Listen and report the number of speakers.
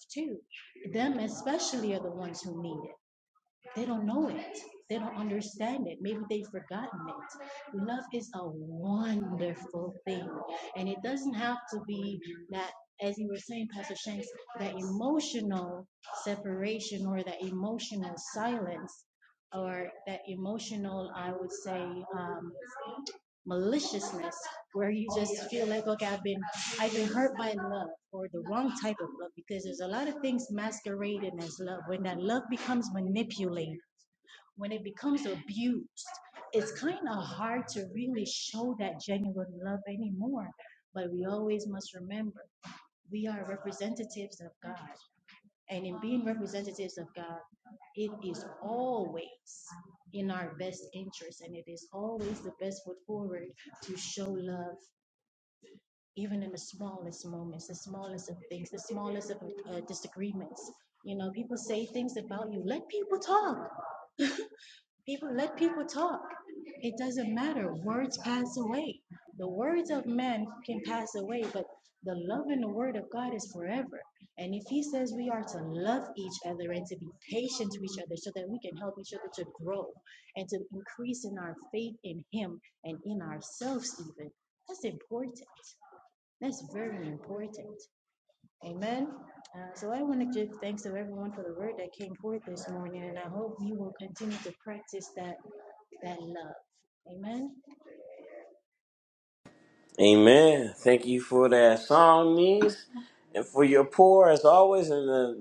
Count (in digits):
2